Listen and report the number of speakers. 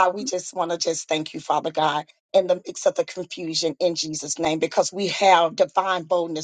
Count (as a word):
one